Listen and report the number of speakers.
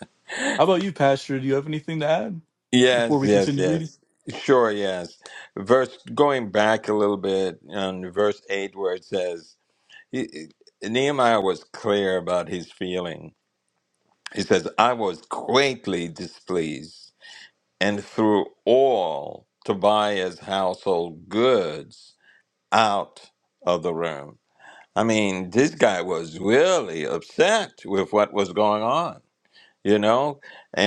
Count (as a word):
two